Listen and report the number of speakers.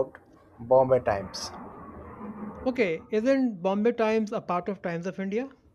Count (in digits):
2